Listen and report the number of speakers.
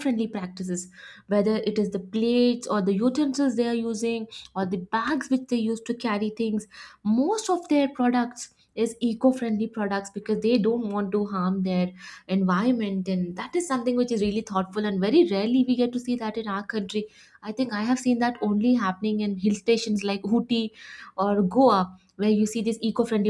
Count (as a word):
one